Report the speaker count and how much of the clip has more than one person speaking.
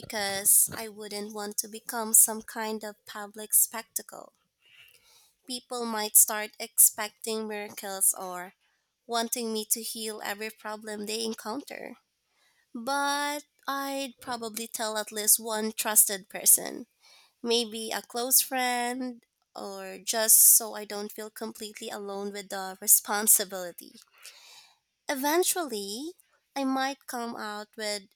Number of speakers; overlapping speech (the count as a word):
one, no overlap